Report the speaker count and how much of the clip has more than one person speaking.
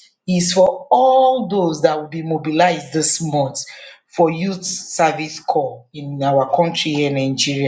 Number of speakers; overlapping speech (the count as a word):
one, no overlap